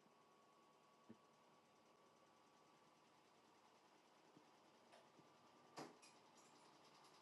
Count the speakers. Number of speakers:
zero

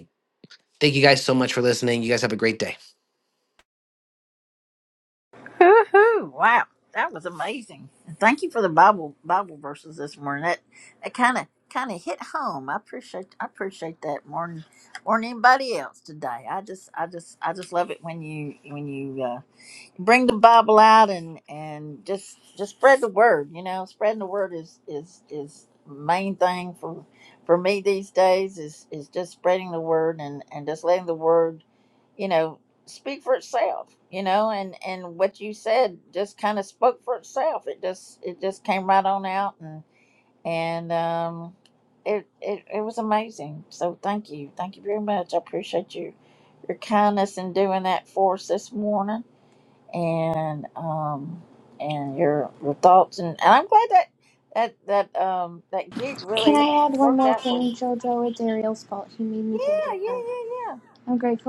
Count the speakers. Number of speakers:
three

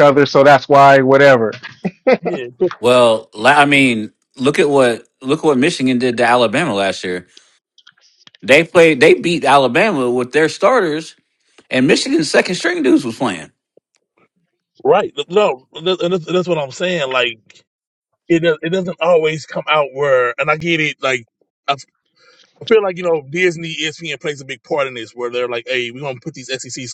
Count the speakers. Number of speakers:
three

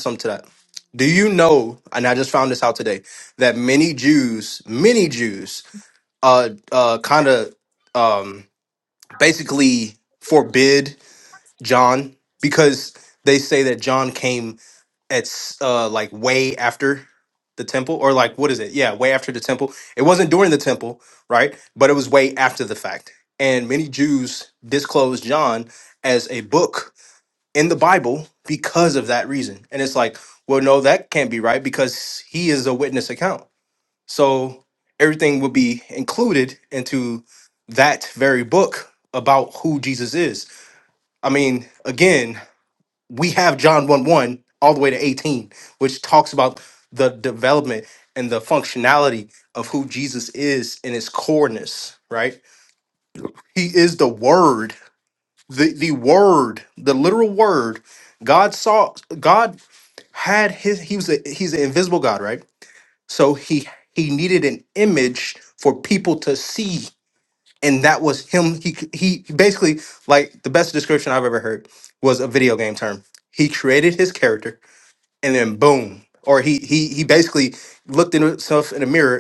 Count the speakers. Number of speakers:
one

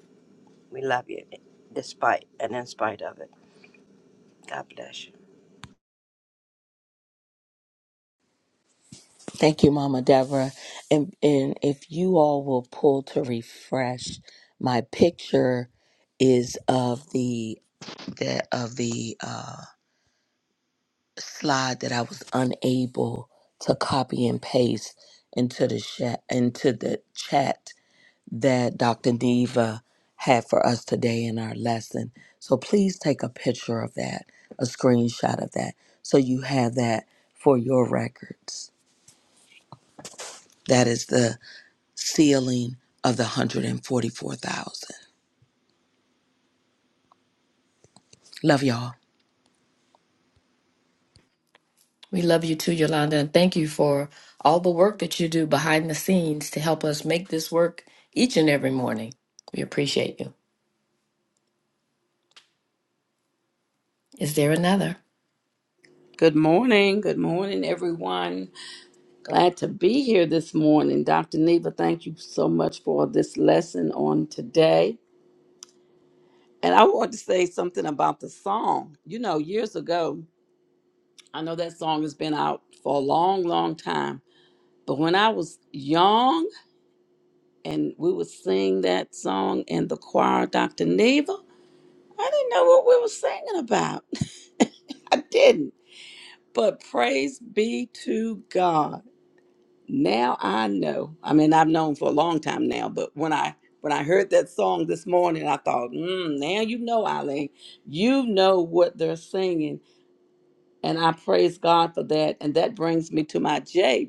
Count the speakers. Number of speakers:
four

